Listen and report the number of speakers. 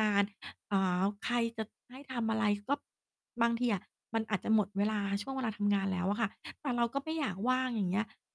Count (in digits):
1